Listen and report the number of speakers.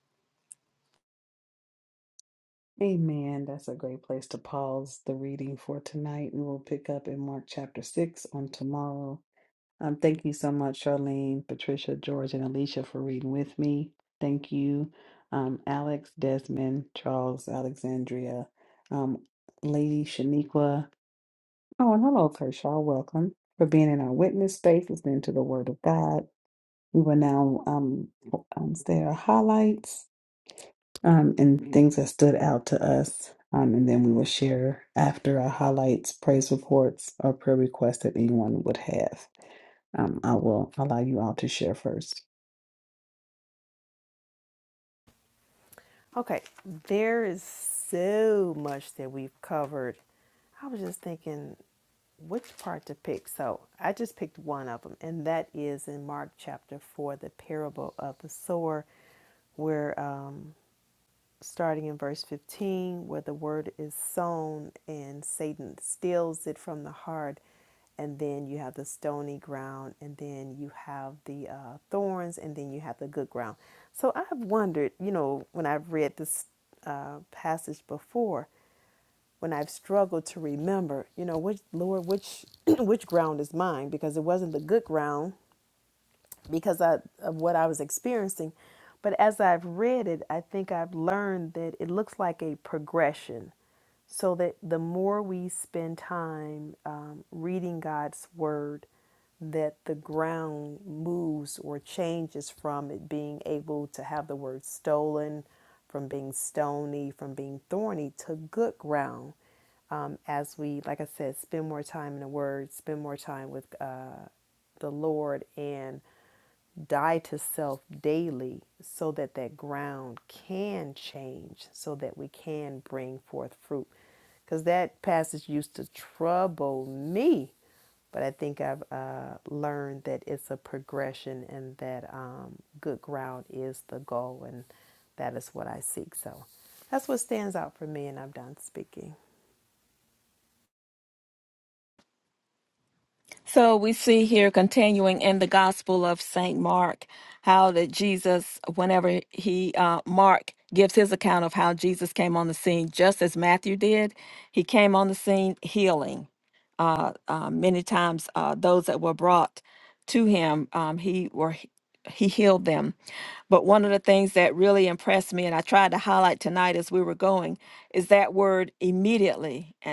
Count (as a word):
three